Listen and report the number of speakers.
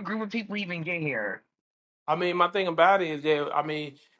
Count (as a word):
two